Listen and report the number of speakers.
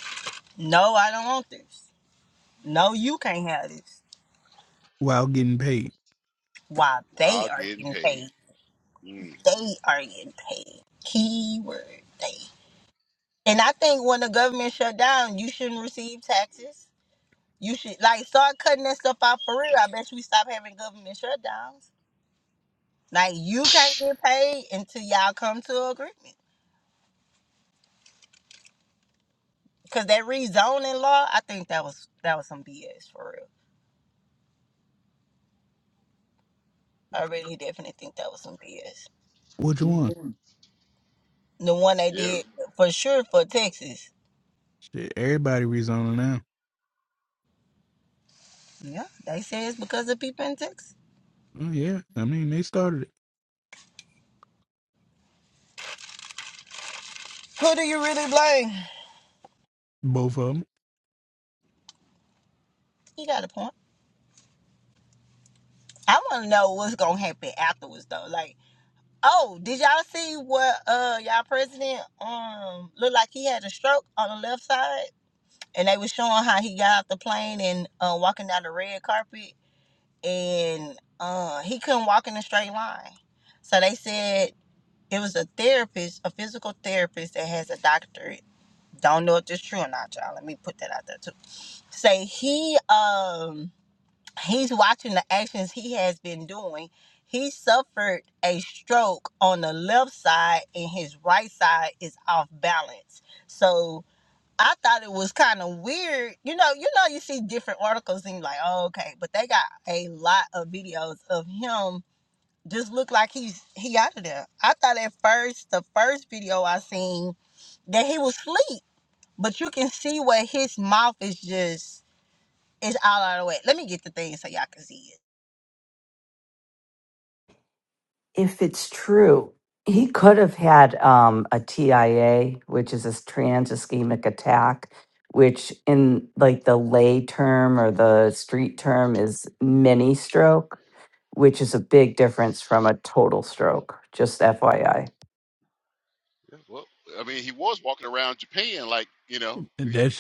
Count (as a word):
four